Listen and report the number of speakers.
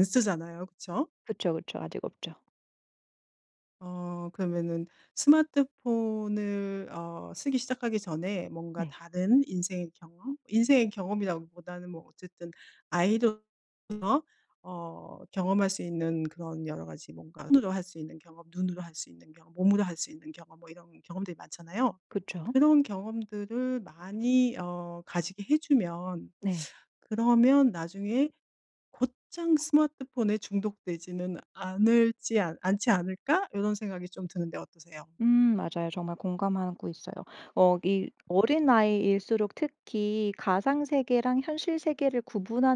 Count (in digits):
2